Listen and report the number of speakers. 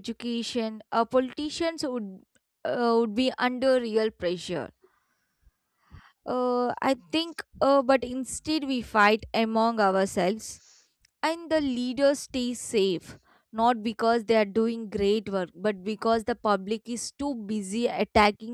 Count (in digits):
1